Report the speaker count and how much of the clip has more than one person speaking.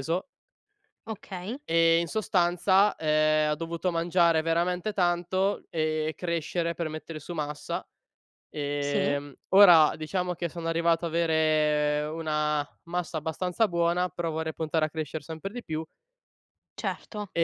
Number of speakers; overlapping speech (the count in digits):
2, about 2%